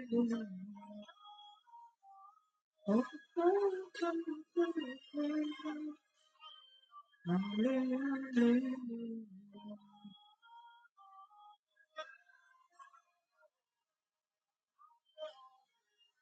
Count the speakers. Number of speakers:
0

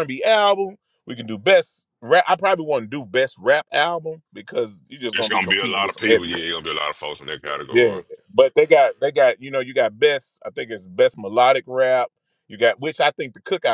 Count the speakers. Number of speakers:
2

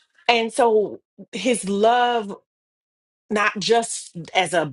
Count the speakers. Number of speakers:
1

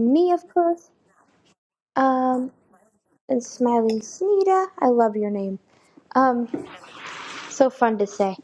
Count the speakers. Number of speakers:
1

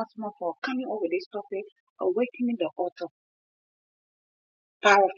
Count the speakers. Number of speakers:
1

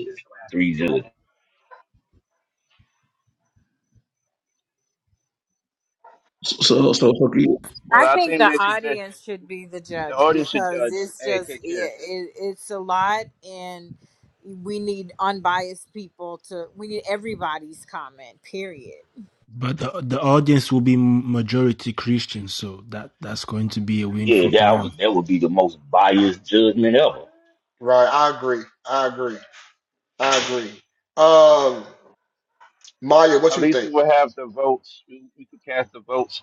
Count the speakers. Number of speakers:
6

